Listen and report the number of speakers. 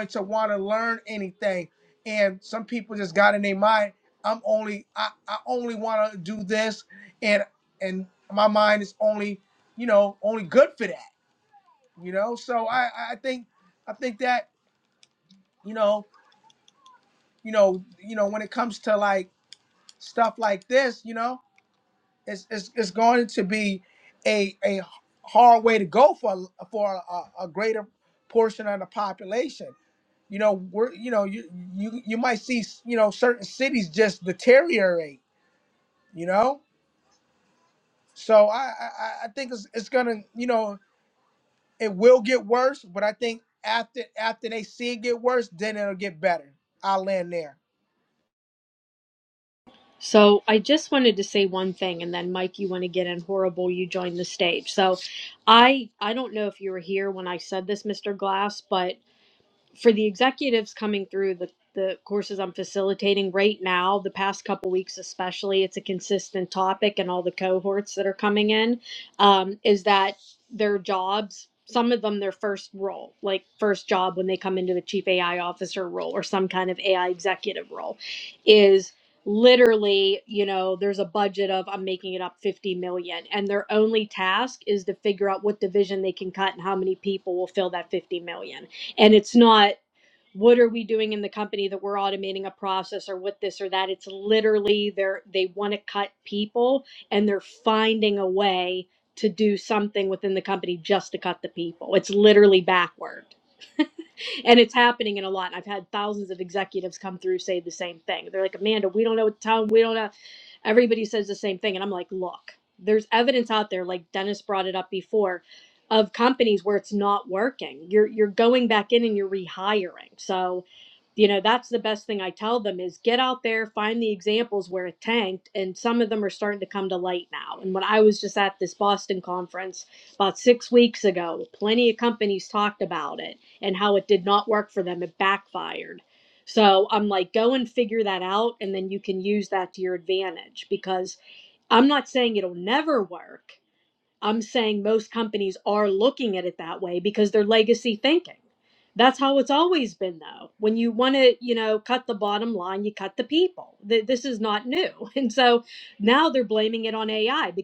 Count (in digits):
2